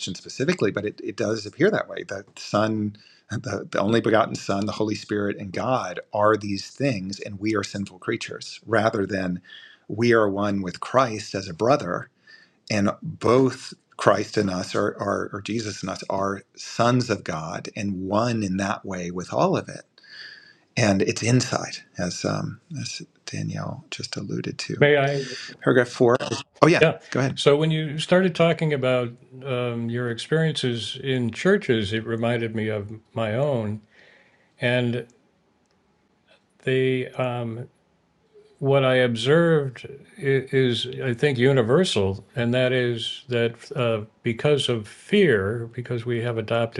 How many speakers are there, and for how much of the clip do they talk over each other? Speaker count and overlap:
2, under 1%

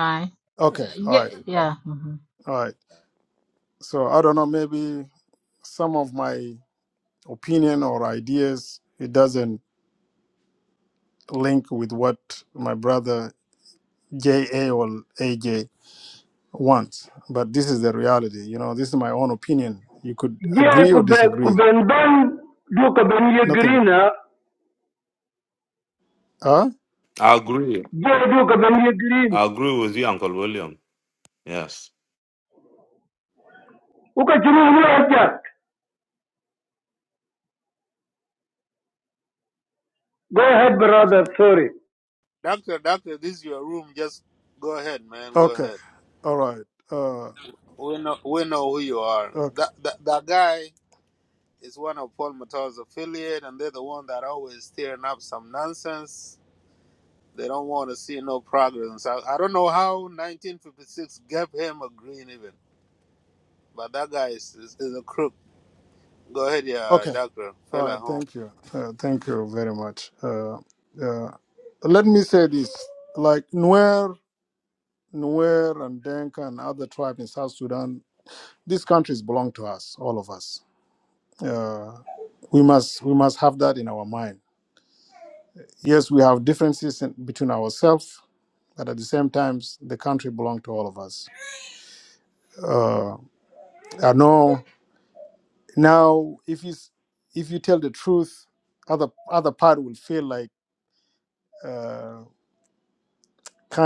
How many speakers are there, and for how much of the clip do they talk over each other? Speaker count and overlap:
5, about 3%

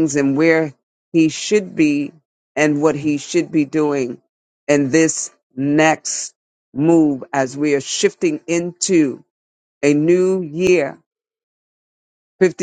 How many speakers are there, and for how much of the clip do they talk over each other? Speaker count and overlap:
1, no overlap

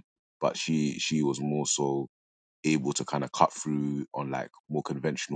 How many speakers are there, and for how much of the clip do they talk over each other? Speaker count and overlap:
1, no overlap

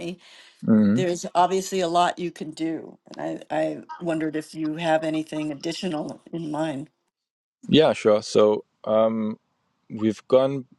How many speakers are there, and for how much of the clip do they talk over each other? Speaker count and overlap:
2, about 1%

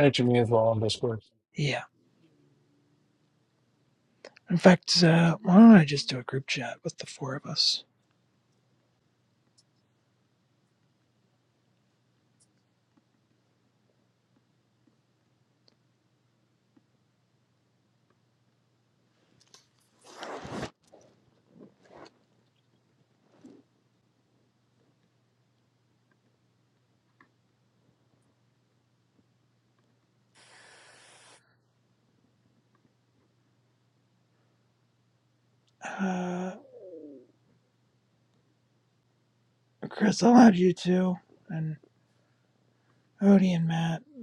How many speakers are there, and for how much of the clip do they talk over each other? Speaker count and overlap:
2, no overlap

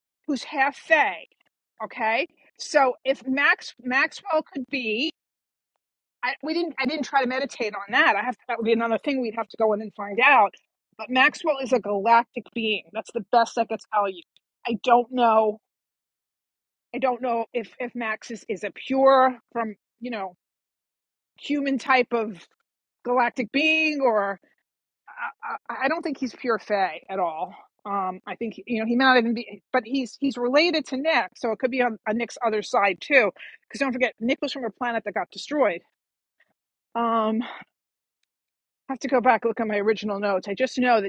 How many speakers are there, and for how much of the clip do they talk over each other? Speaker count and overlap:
1, no overlap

